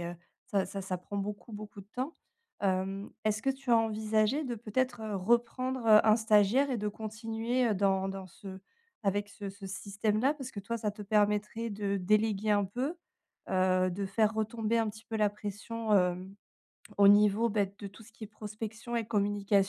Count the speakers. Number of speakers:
1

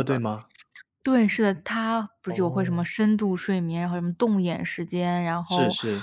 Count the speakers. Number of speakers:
2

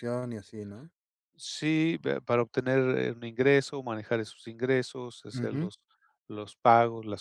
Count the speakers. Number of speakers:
2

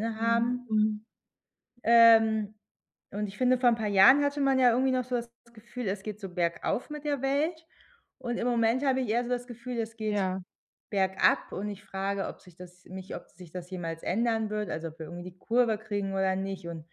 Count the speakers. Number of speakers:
2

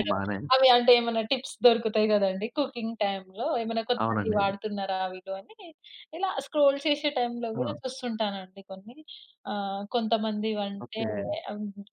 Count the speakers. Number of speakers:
2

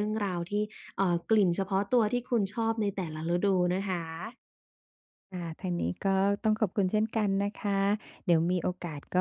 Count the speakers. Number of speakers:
2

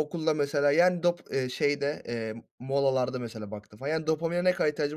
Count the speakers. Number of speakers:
1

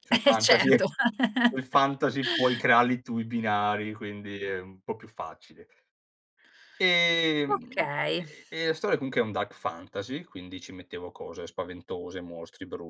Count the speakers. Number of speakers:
2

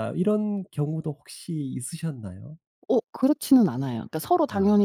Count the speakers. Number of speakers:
2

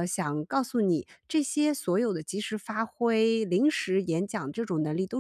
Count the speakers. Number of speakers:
1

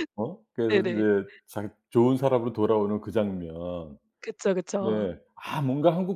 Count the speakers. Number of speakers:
2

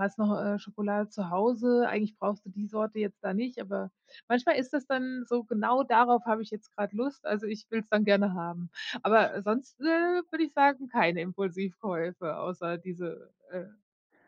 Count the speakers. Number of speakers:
1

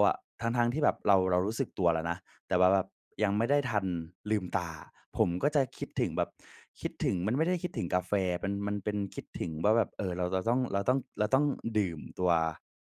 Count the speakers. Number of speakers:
1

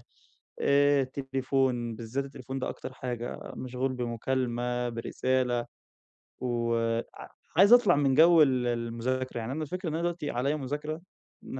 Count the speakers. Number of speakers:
1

